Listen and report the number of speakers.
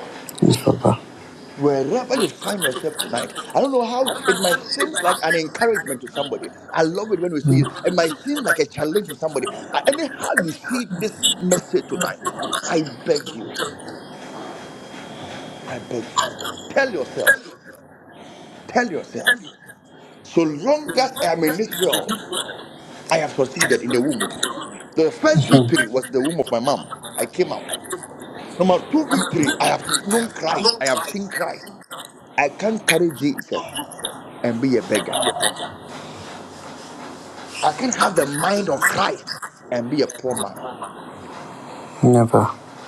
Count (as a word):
two